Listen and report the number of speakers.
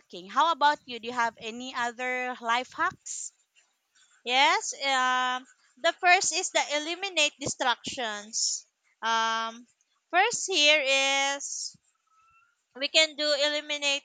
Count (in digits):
2